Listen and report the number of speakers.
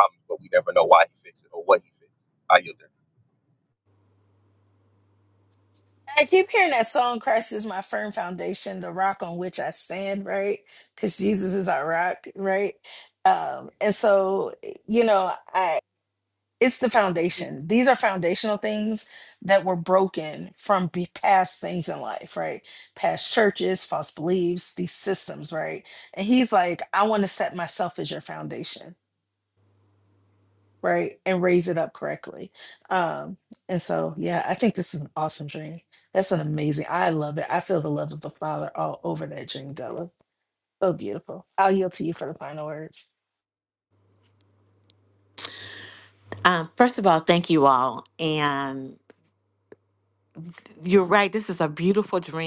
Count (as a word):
three